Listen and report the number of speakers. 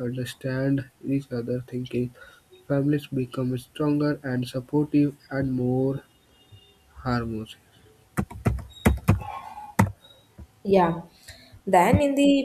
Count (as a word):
two